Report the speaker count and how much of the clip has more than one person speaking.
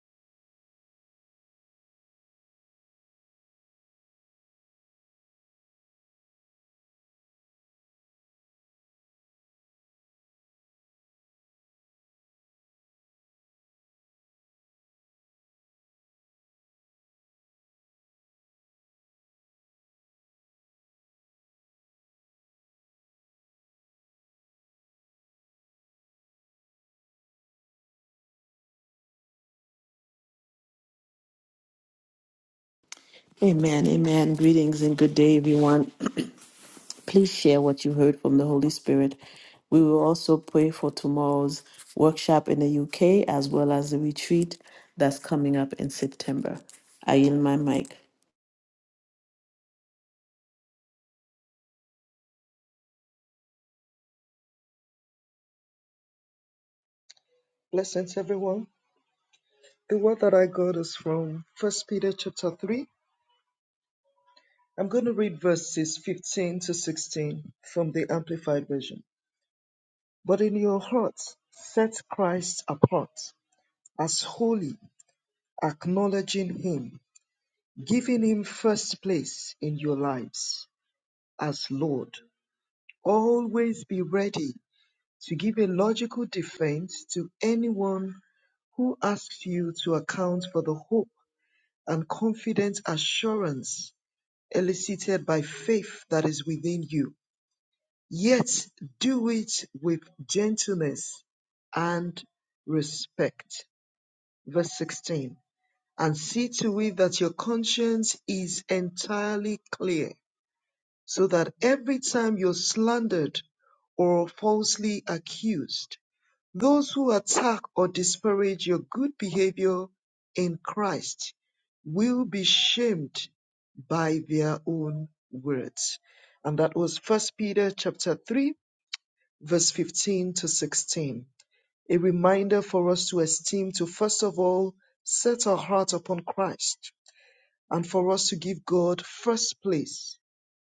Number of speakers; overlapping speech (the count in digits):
2, no overlap